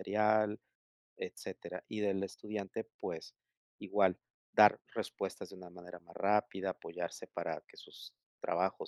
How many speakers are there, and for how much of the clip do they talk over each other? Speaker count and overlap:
one, no overlap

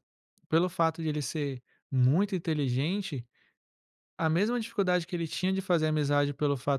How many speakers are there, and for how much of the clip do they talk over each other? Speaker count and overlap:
one, no overlap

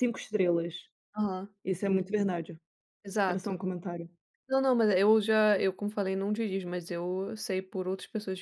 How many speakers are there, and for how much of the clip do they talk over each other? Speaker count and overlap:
two, about 4%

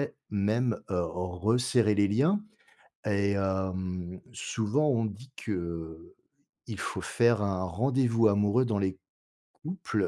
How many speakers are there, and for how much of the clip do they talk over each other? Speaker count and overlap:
one, no overlap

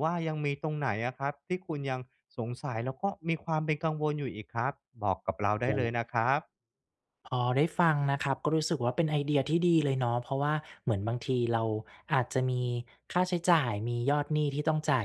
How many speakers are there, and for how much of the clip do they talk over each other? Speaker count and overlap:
two, about 2%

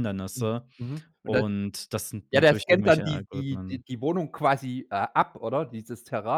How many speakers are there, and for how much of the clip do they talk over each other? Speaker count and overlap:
two, about 27%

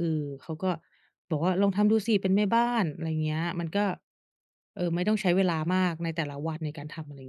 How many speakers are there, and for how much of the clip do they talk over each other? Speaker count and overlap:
one, no overlap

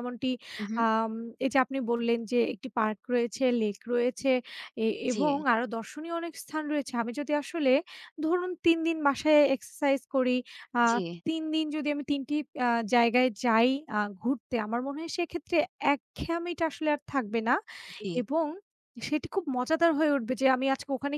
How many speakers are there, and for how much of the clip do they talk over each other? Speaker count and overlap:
two, about 2%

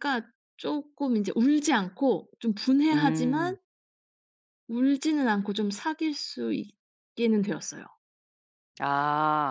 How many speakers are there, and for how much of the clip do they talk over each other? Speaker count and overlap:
two, about 7%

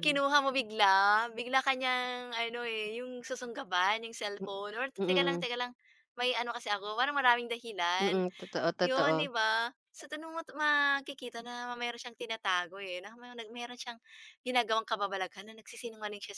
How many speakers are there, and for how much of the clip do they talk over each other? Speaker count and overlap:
two, about 8%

